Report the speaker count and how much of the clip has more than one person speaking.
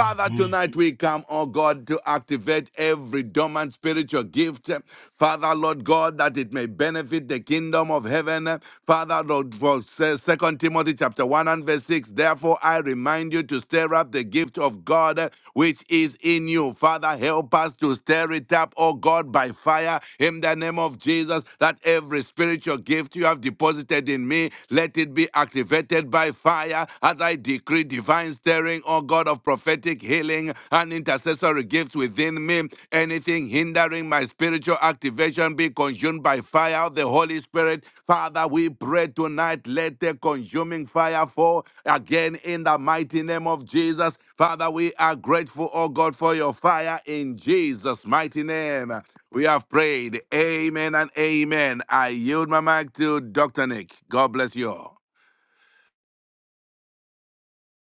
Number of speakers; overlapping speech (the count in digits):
1, no overlap